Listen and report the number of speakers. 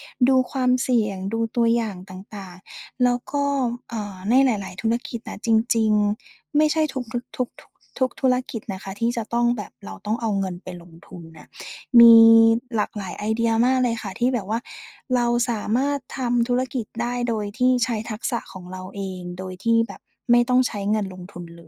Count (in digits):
1